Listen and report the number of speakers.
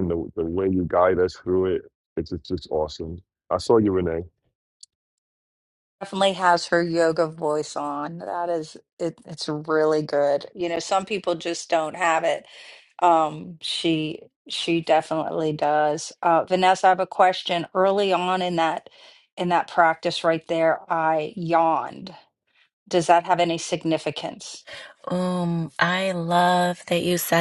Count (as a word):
three